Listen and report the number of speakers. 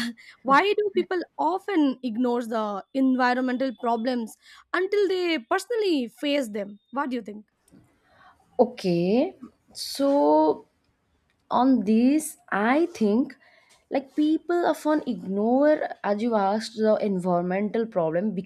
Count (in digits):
2